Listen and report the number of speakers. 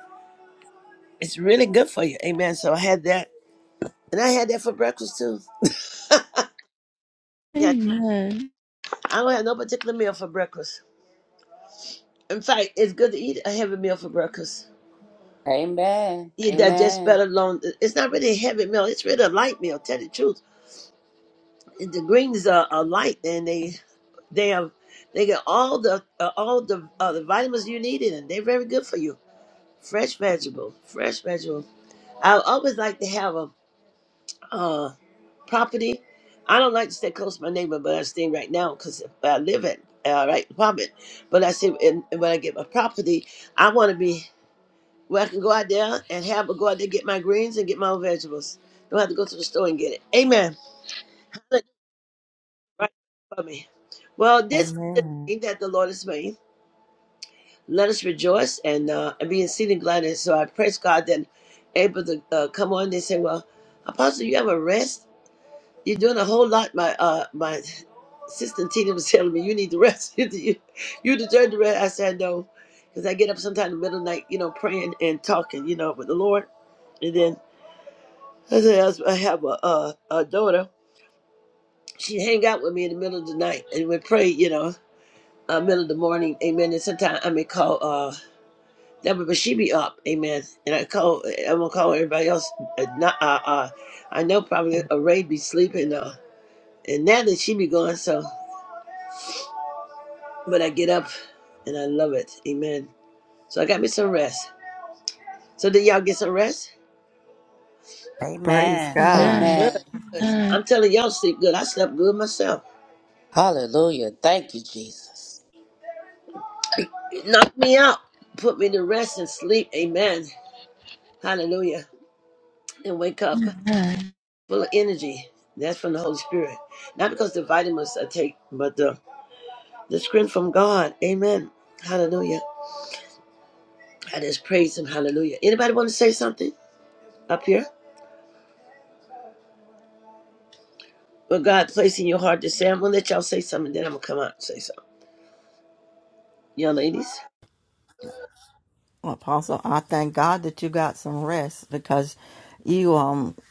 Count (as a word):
four